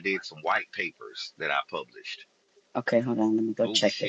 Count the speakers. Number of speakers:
2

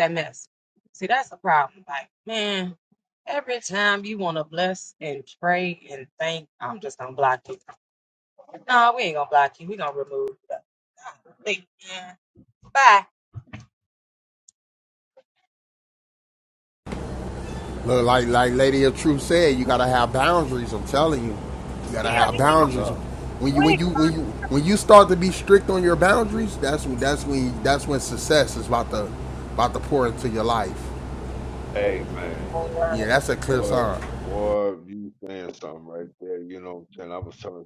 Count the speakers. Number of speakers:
3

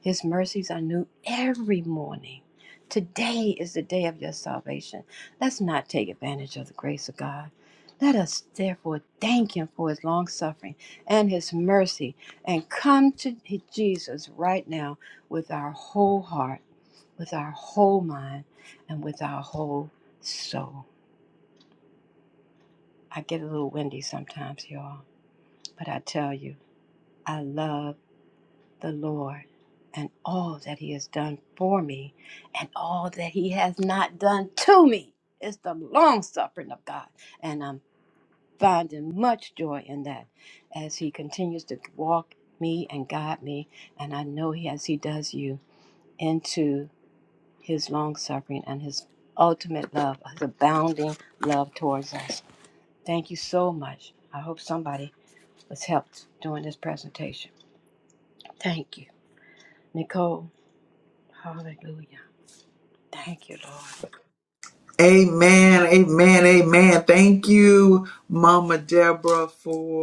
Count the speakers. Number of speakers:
2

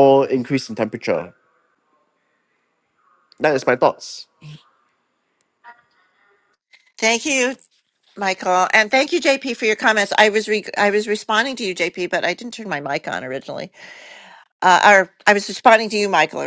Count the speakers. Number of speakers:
2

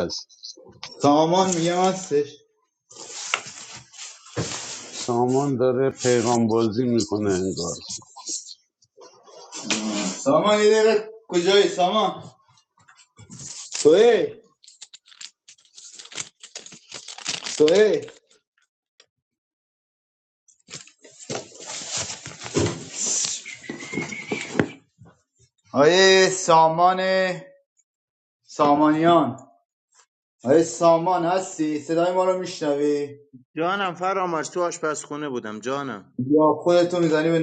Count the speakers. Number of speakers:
3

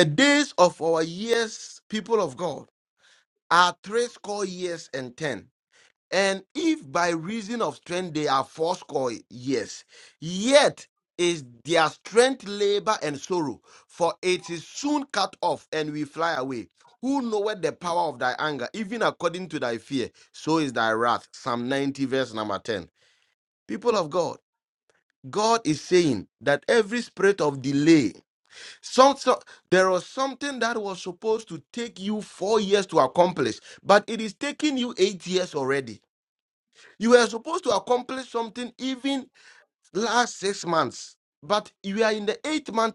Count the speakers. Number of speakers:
1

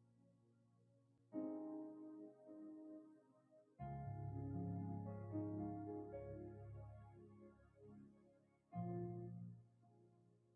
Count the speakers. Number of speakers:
0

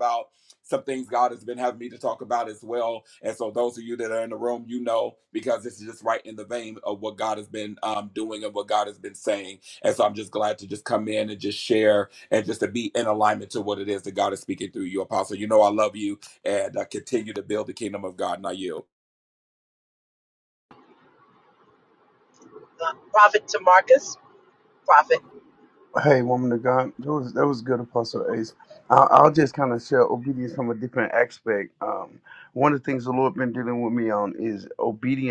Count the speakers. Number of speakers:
3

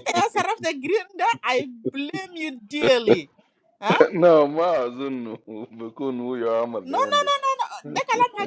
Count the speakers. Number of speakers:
2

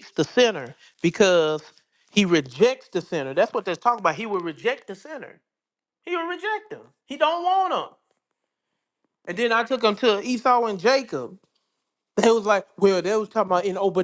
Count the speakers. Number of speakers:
1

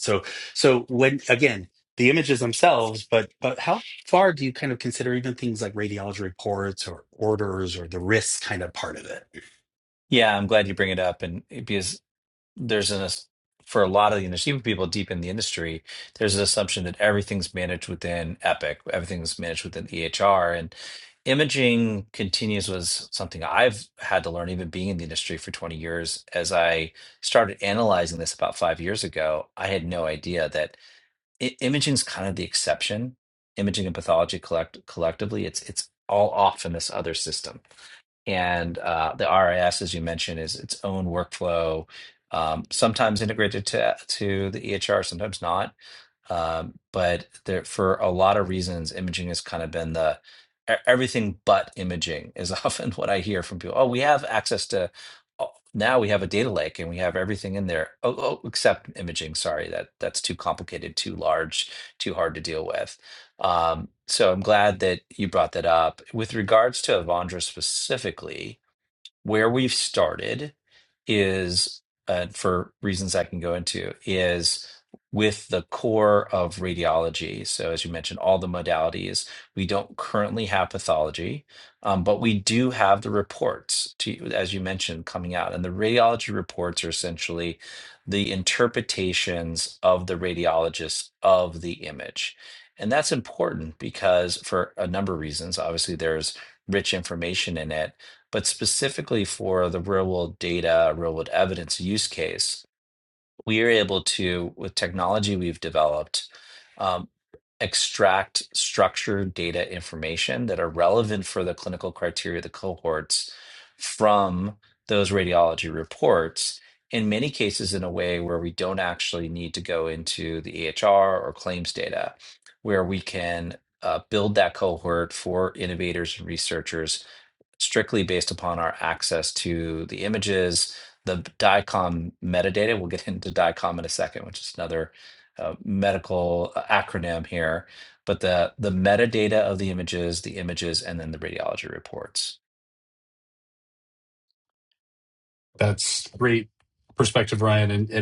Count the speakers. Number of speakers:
3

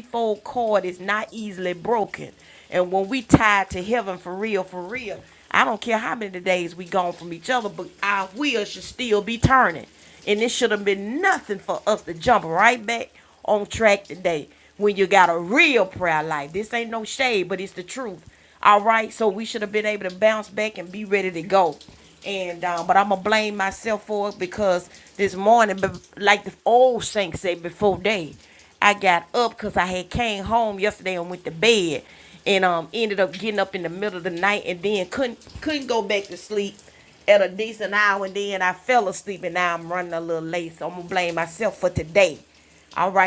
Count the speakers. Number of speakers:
1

